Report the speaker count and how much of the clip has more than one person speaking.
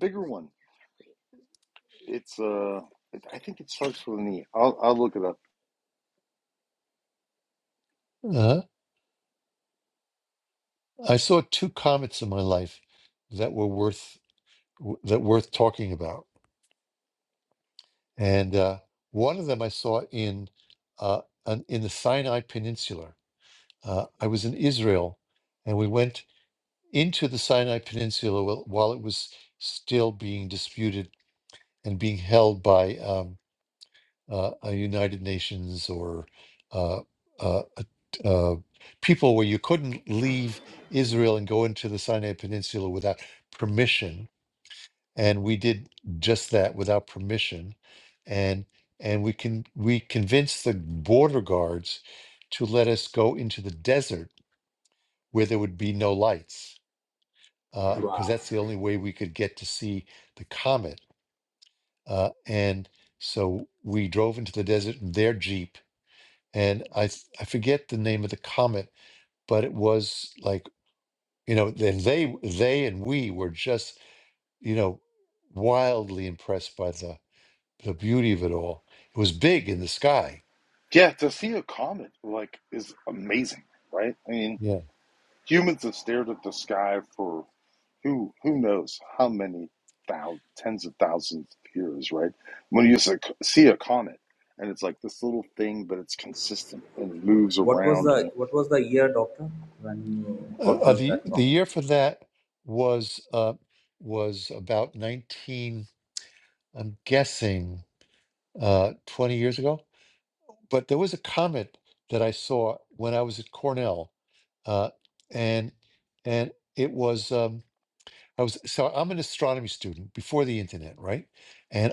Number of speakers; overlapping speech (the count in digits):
3, about 2%